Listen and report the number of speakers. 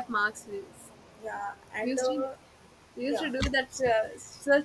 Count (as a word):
two